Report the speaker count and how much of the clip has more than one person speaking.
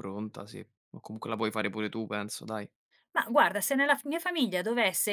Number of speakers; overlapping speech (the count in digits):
2, no overlap